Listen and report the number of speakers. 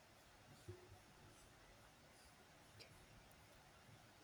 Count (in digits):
0